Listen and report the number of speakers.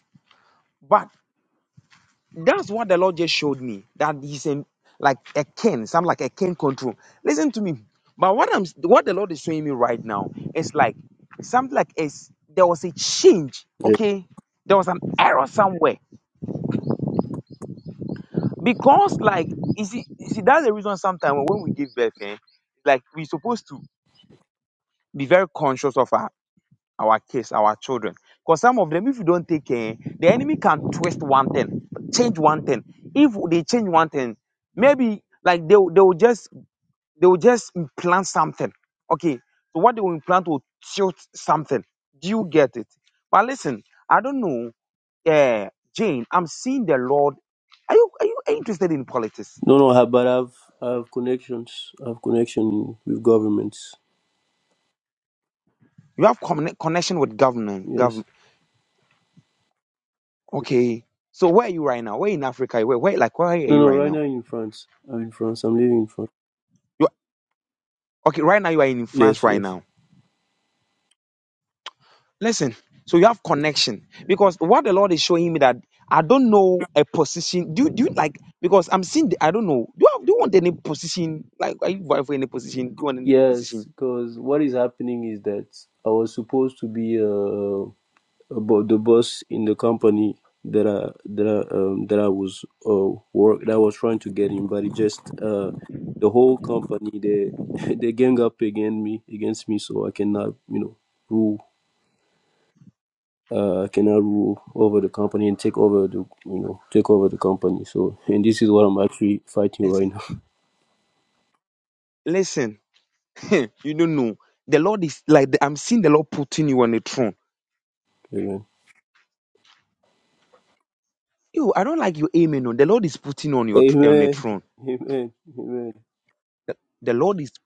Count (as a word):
two